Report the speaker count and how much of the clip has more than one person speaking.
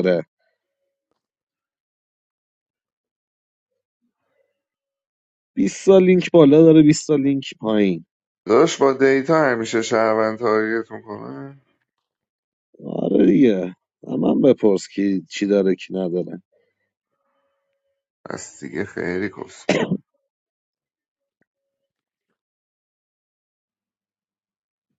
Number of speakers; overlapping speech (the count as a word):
two, no overlap